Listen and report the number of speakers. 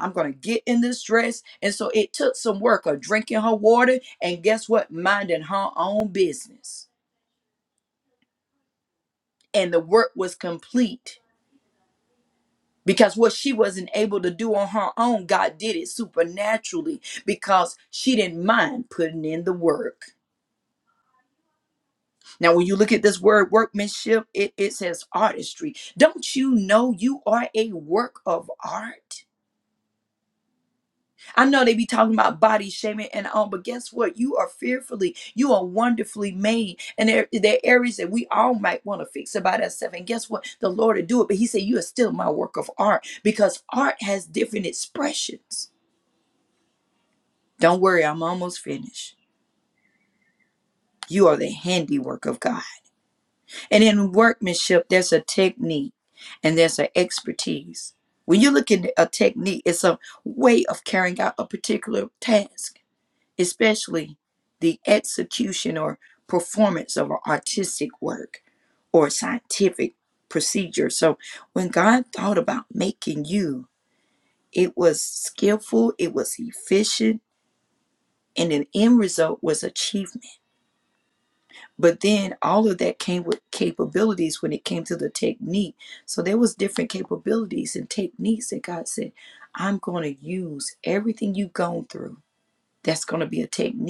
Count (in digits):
1